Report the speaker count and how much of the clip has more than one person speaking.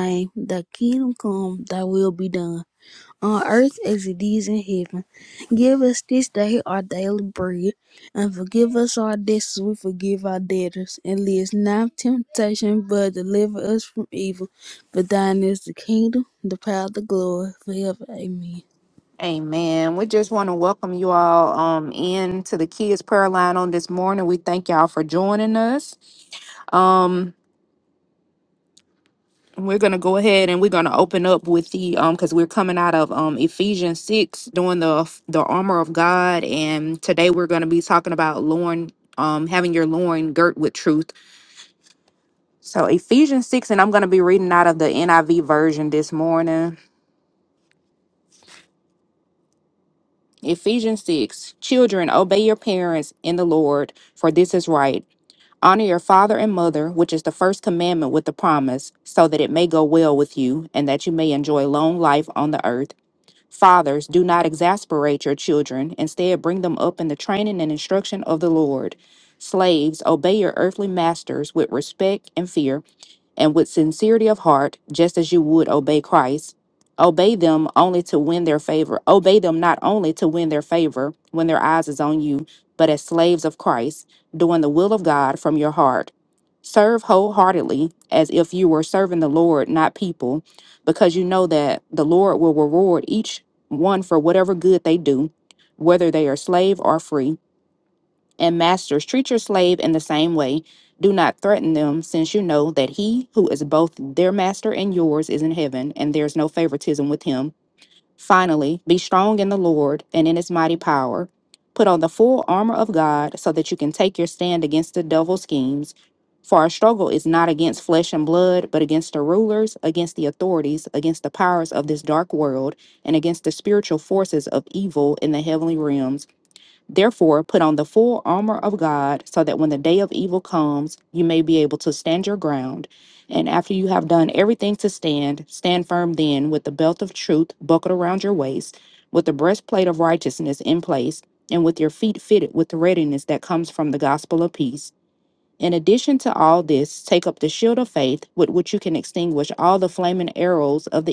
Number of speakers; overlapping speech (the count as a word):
two, no overlap